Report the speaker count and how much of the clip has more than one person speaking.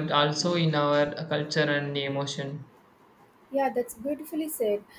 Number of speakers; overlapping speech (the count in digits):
2, no overlap